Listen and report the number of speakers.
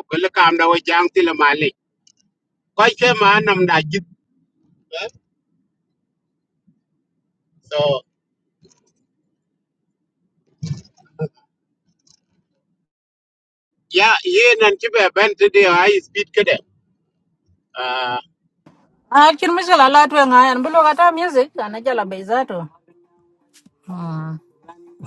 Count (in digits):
2